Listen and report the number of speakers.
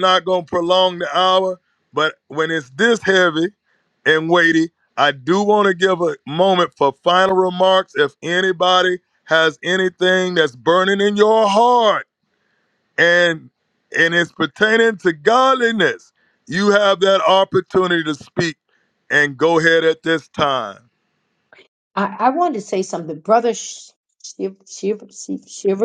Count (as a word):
two